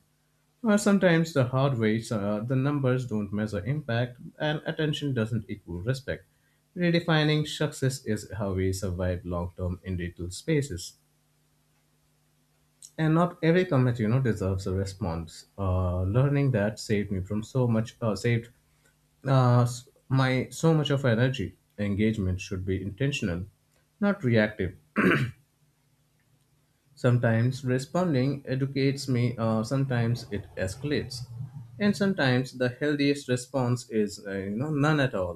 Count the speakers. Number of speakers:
one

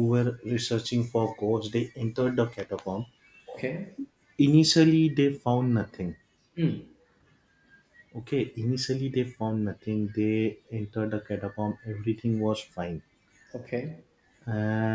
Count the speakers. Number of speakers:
two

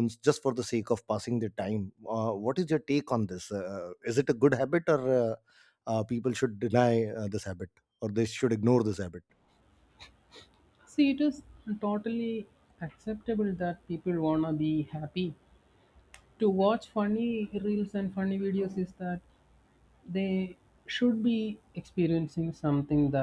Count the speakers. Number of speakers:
two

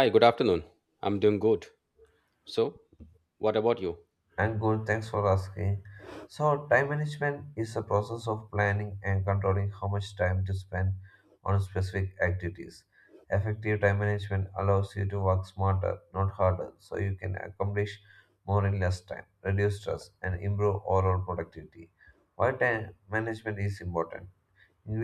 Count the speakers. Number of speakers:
two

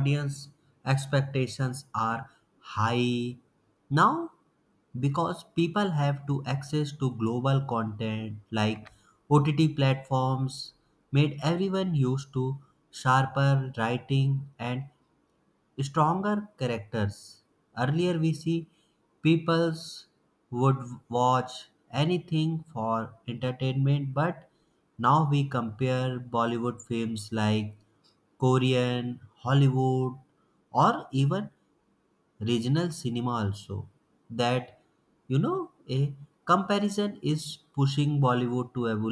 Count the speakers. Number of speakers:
one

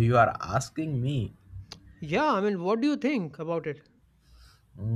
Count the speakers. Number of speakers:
two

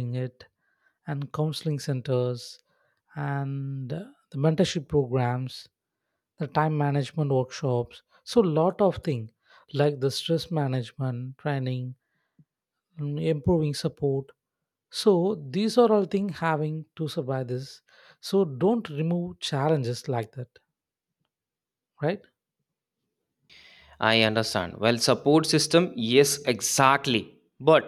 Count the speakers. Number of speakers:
two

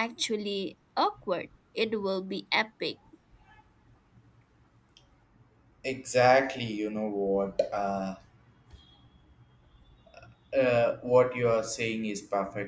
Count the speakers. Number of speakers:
two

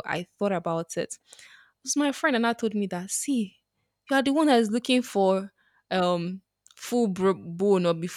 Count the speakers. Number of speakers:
one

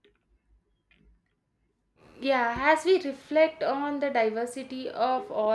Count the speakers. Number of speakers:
one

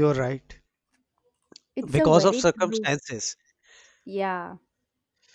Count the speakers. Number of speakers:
two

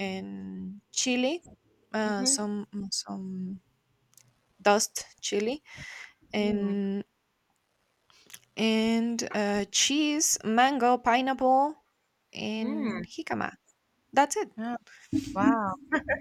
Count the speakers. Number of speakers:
two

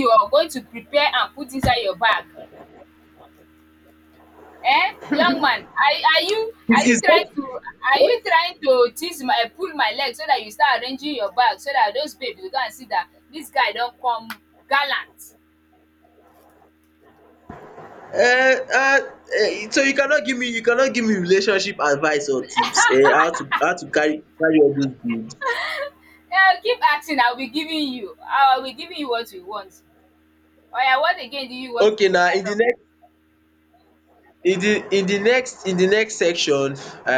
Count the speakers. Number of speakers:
two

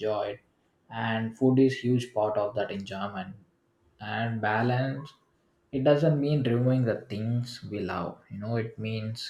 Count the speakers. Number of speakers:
one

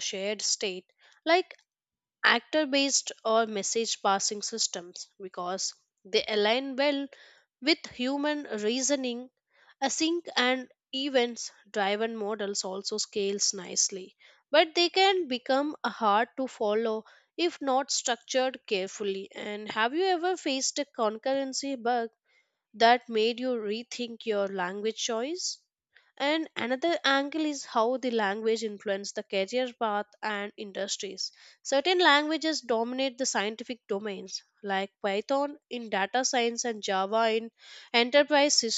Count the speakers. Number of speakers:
one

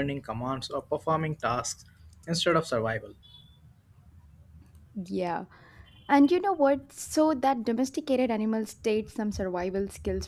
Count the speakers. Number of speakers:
two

